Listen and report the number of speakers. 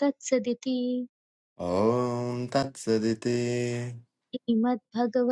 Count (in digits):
2